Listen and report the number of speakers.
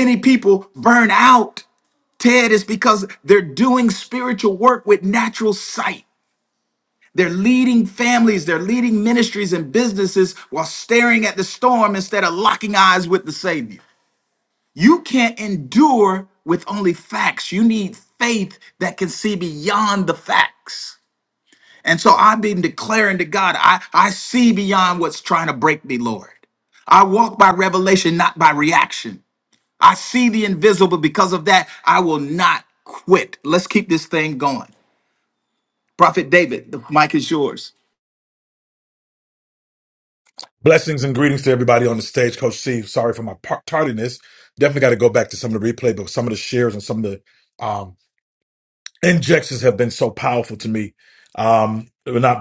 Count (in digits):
2